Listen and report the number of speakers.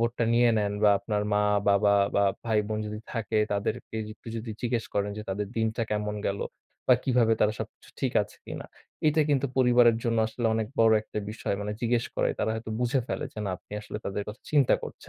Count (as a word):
one